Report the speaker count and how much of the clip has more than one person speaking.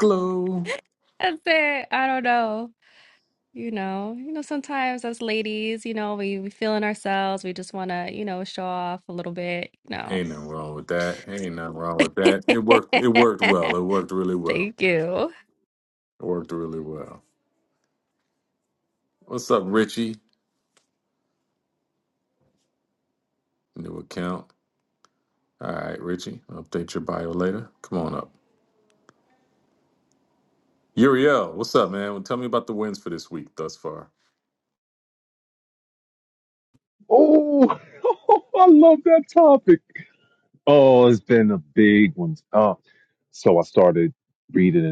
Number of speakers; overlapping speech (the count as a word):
three, about 1%